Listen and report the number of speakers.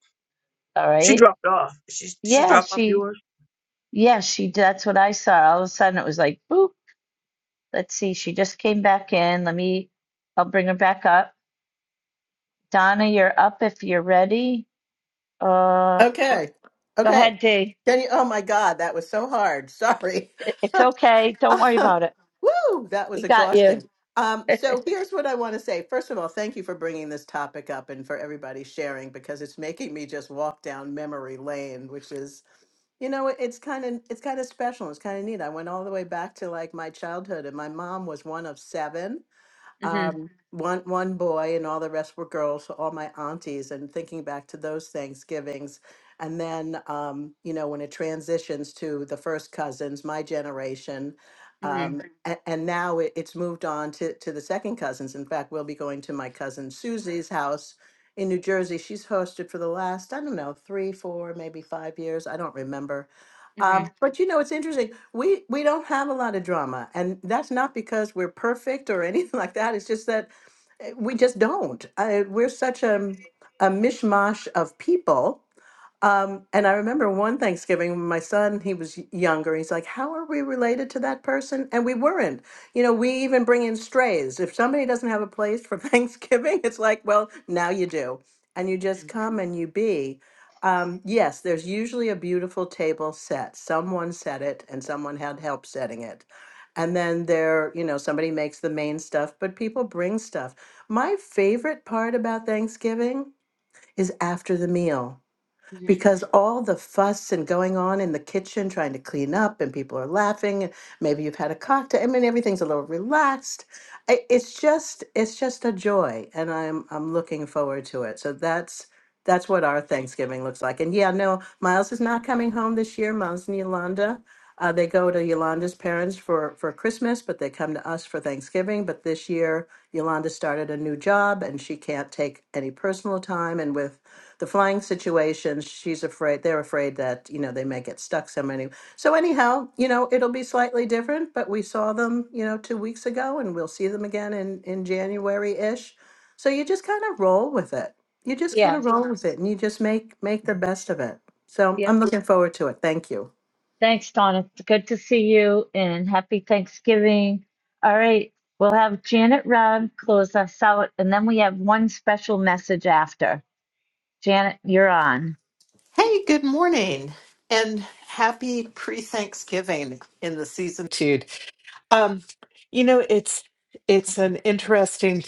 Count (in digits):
4